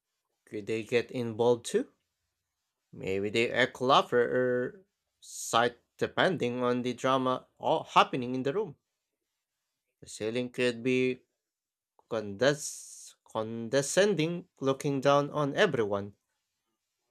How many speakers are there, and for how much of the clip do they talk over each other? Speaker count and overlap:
1, no overlap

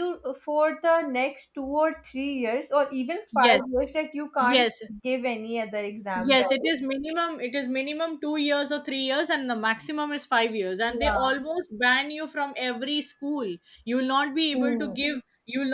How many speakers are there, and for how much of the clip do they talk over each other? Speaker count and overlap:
2, about 12%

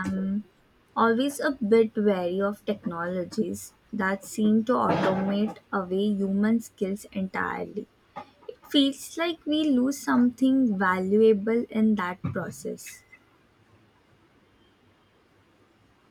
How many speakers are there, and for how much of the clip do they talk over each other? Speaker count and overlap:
1, no overlap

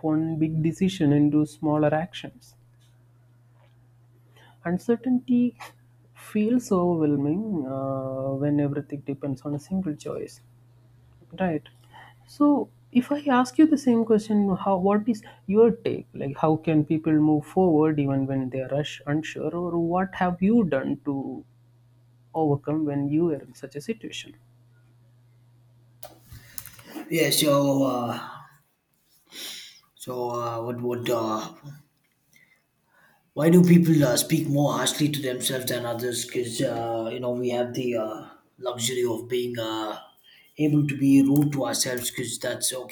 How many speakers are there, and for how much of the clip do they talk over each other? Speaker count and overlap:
2, no overlap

